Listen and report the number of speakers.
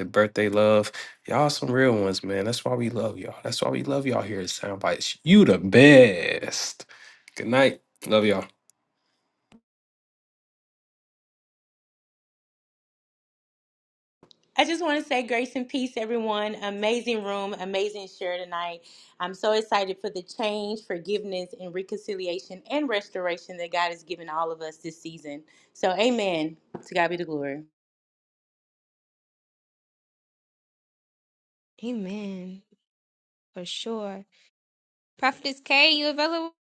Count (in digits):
3